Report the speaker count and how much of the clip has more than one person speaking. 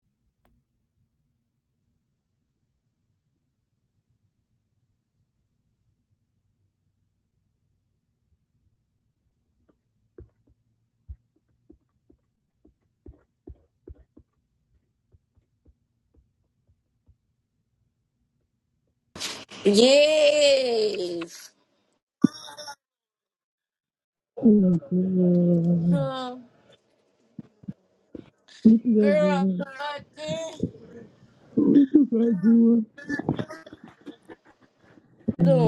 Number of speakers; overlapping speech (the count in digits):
2, about 1%